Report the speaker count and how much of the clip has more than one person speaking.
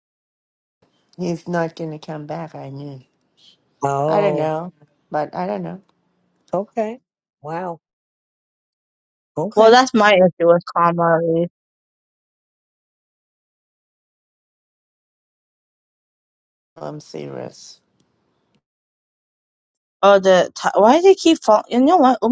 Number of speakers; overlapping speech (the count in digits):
3, about 3%